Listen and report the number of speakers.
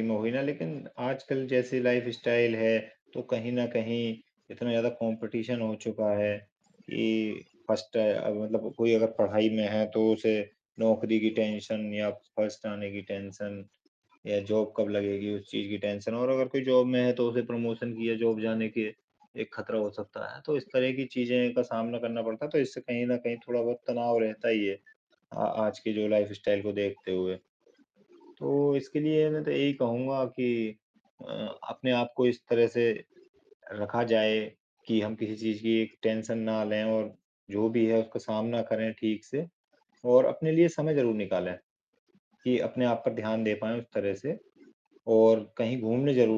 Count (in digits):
1